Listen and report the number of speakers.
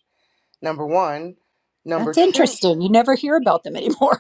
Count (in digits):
2